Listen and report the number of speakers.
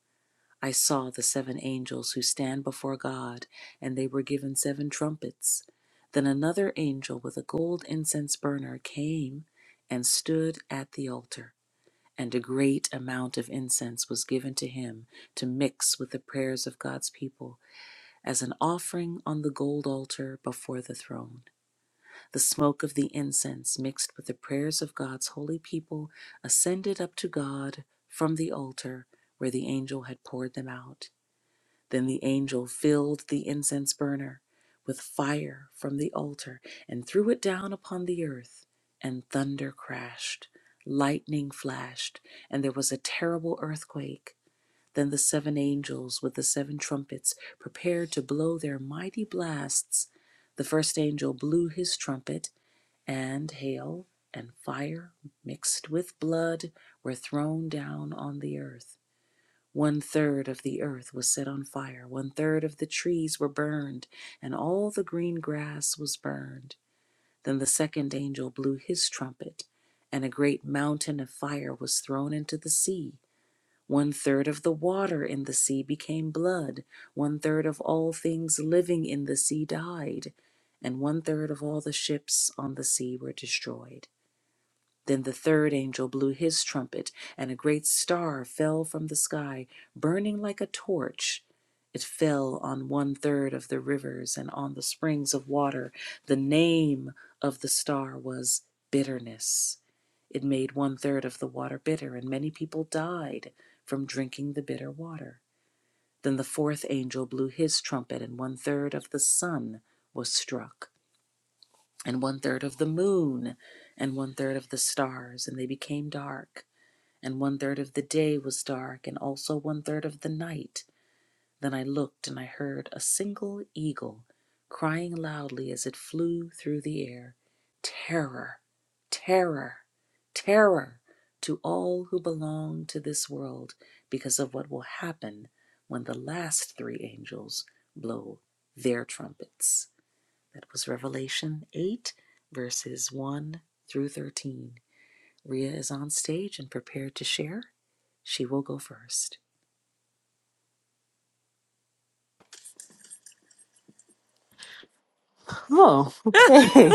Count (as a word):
two